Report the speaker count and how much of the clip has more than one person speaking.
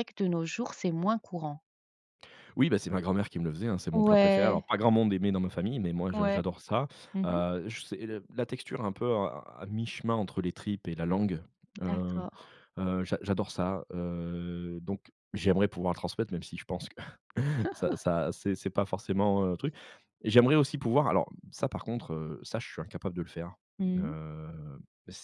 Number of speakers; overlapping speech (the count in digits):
2, about 7%